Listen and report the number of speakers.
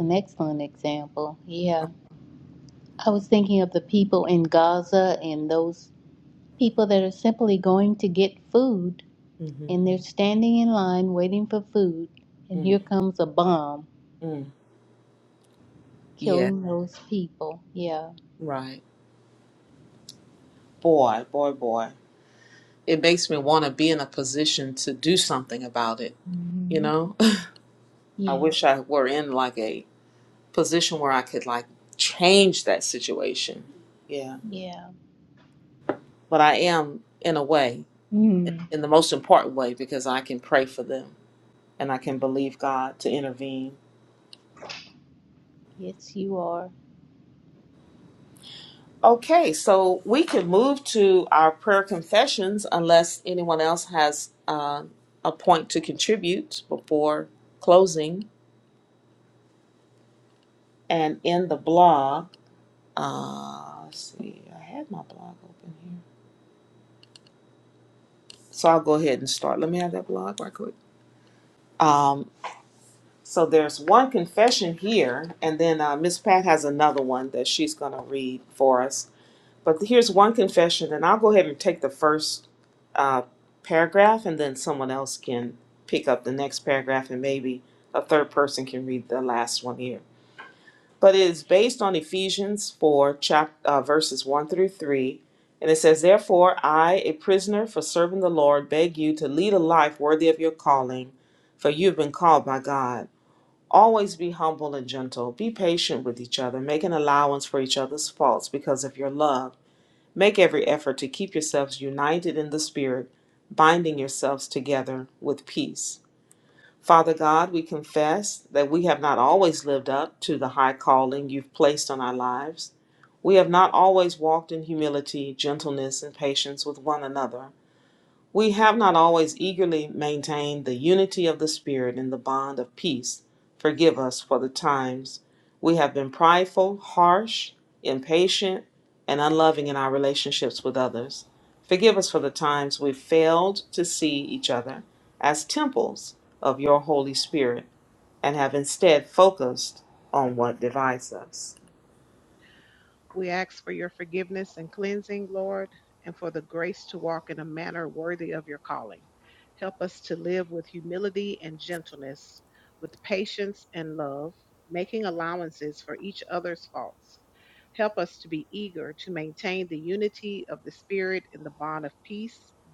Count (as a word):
three